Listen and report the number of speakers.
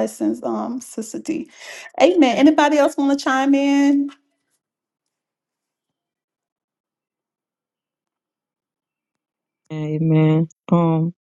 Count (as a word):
two